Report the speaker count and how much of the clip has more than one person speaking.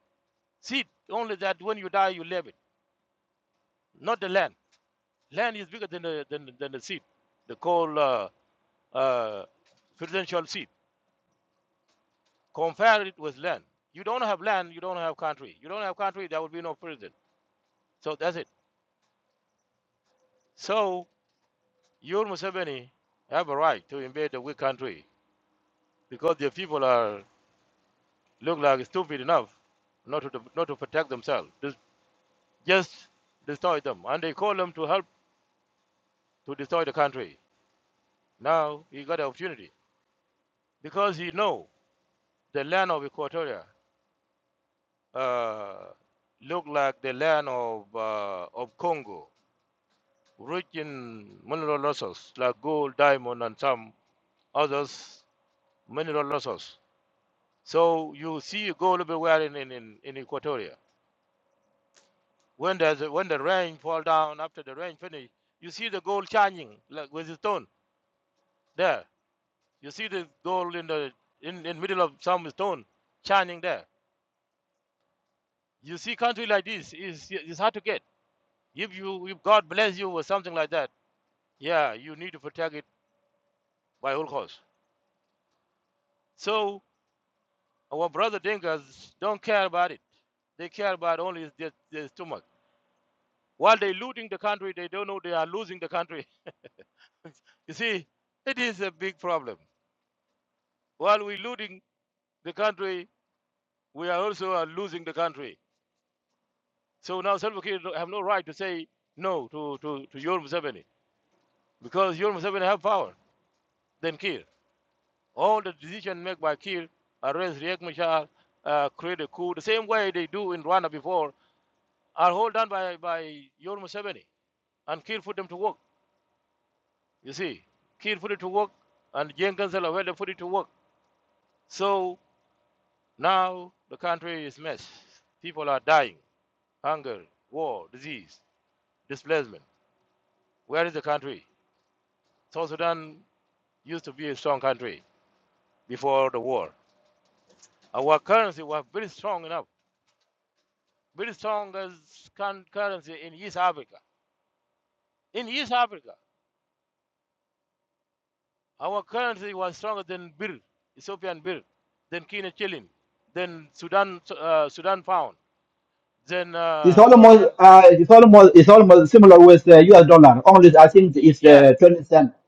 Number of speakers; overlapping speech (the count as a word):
two, about 1%